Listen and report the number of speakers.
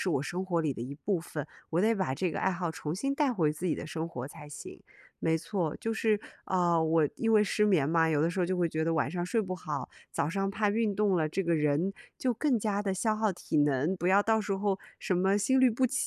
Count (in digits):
1